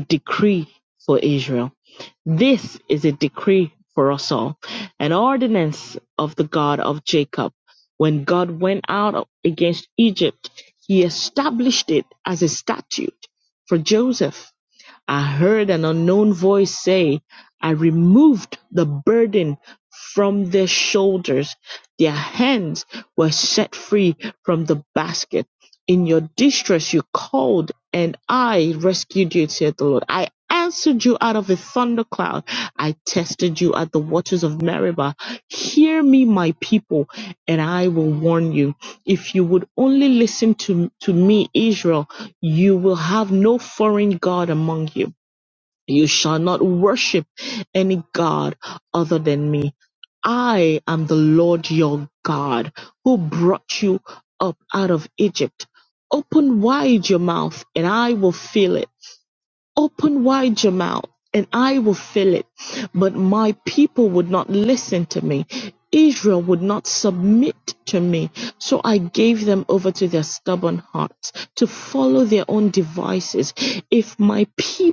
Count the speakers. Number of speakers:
1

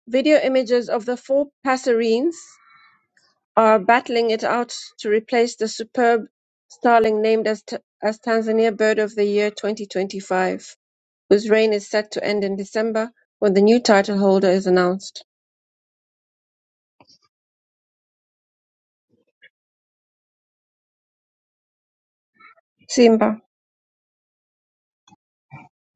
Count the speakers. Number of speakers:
1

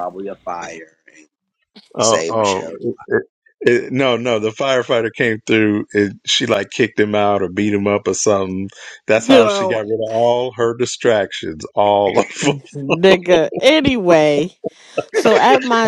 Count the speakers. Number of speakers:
3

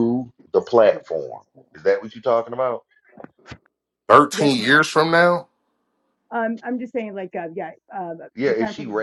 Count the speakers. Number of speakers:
3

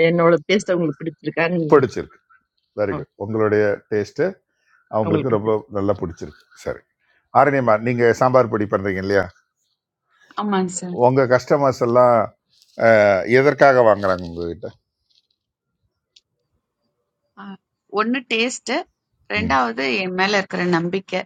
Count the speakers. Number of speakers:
3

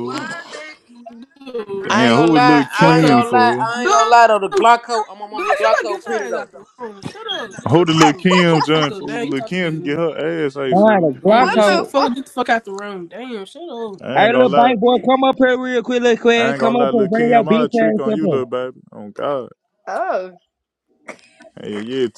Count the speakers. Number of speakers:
5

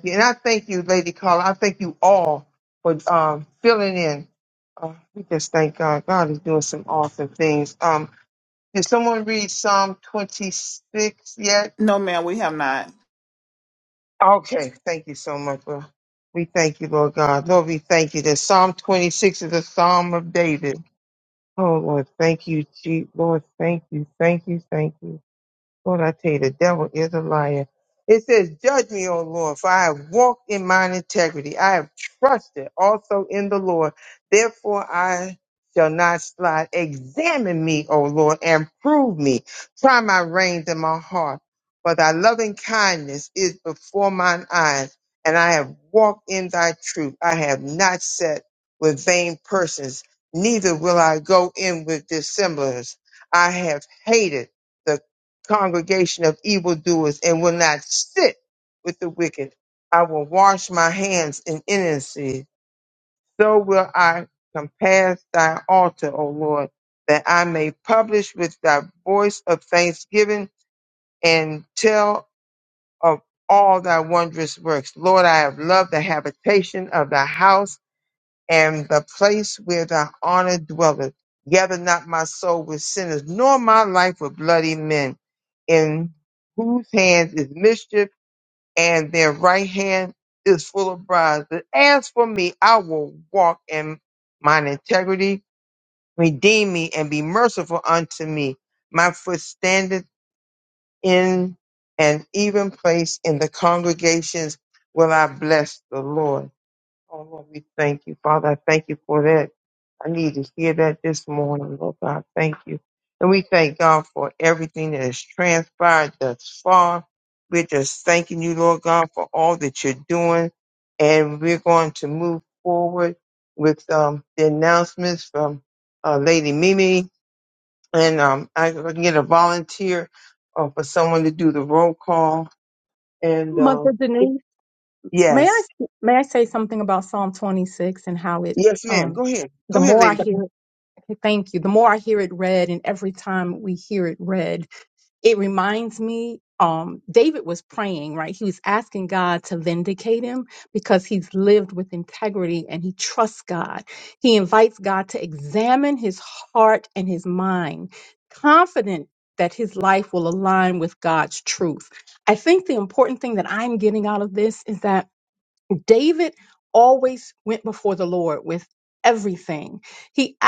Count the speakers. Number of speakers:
3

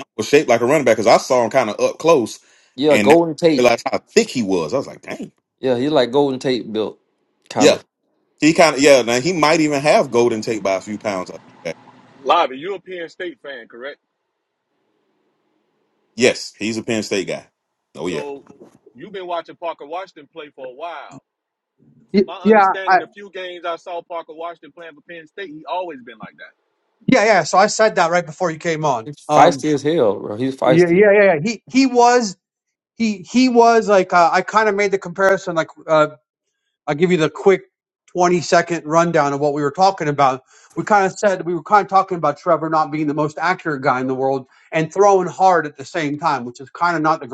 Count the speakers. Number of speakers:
4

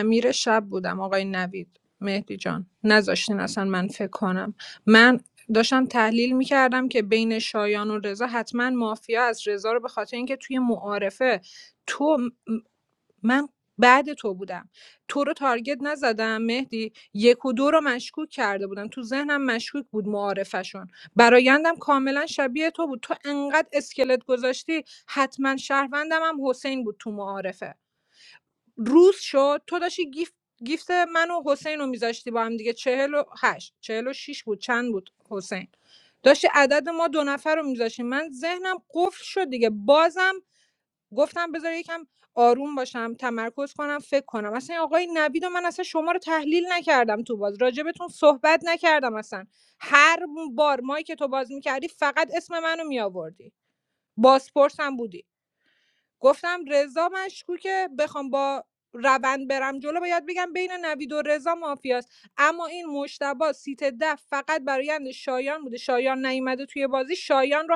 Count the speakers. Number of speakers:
1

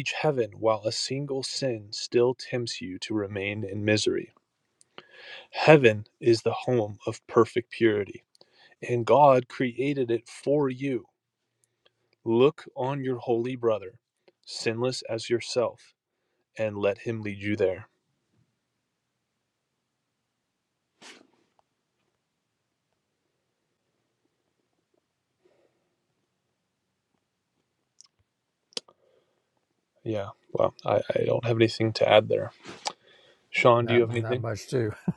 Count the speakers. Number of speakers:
2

